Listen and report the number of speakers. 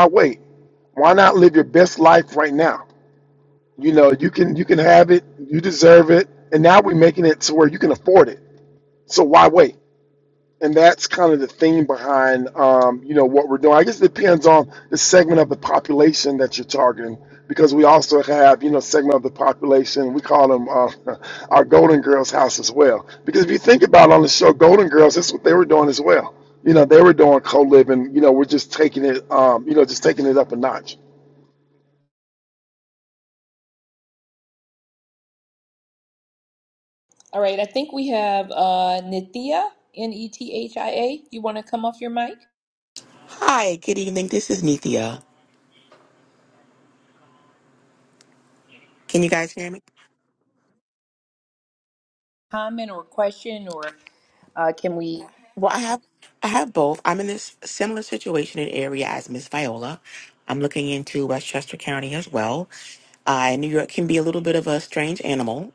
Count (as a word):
three